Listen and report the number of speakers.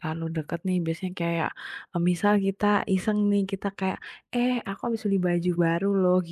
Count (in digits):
1